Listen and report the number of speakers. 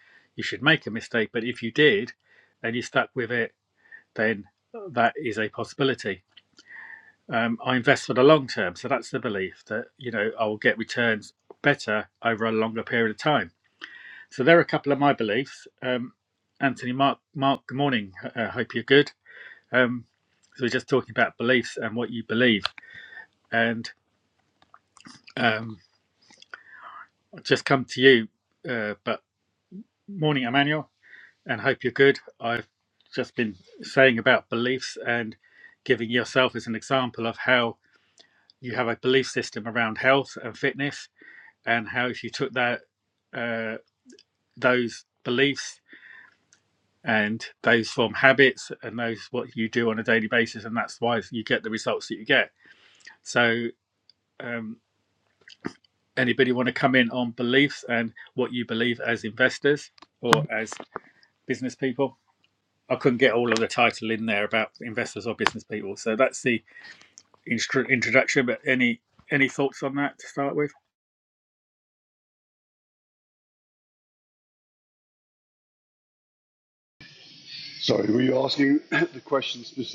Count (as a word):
two